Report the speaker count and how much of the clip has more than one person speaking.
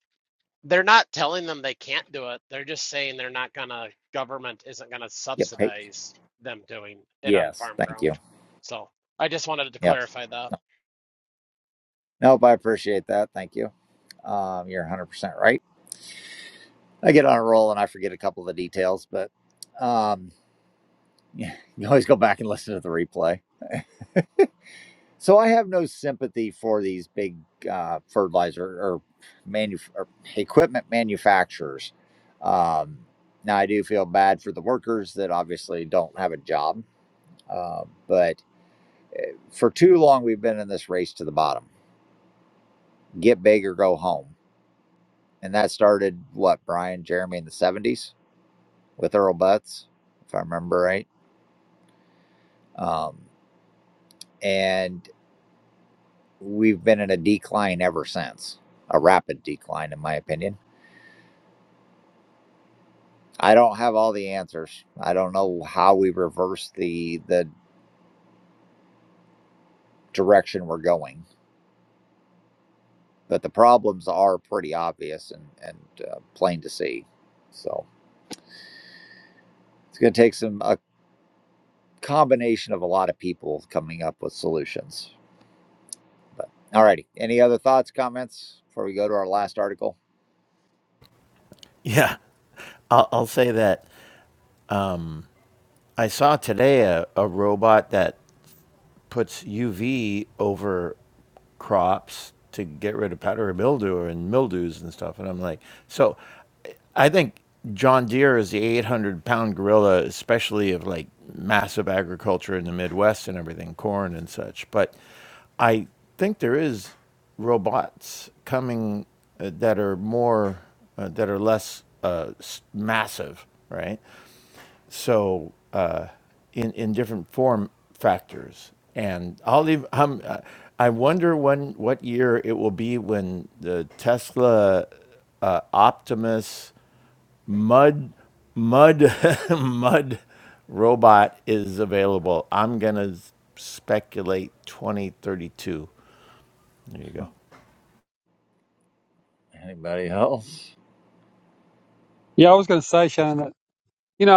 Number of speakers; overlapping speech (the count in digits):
4, about 1%